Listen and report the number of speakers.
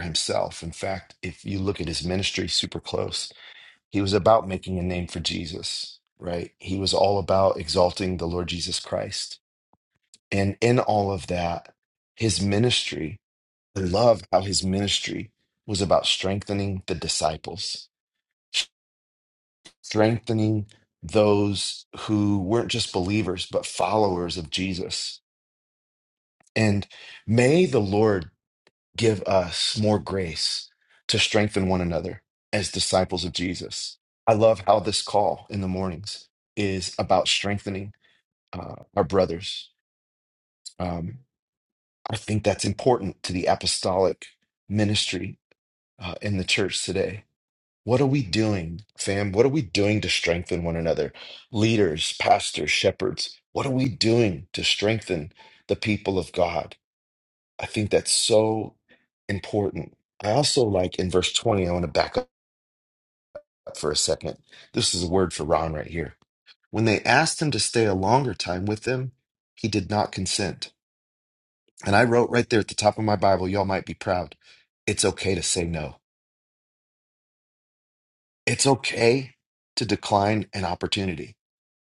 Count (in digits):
1